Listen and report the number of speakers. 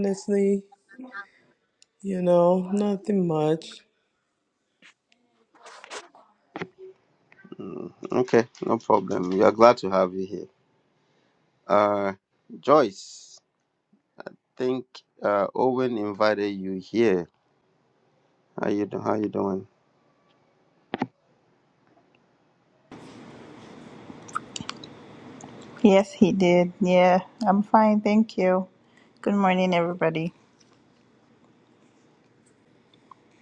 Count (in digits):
3